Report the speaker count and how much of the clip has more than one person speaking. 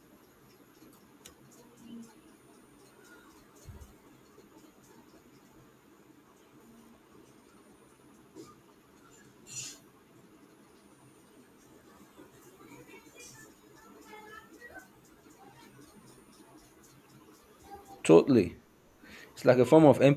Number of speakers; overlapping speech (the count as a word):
one, no overlap